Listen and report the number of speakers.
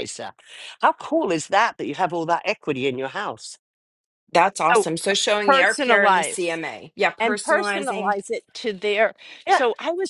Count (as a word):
three